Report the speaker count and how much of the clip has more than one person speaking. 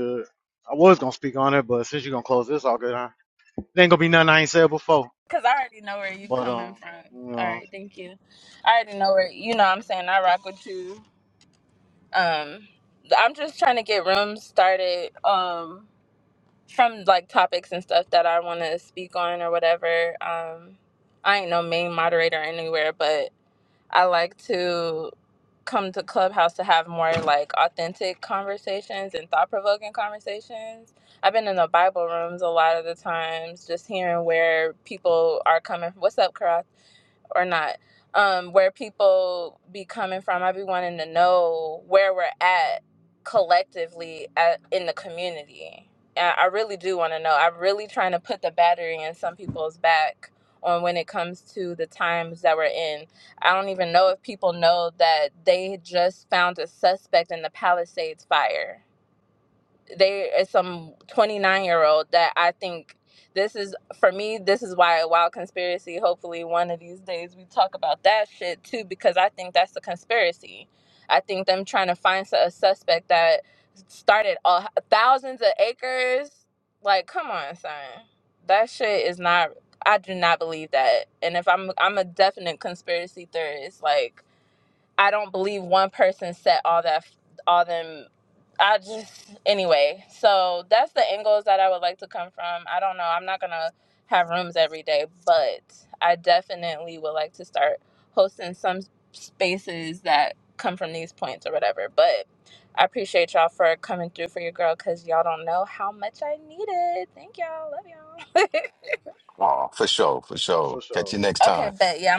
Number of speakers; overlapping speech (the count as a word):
three, about 1%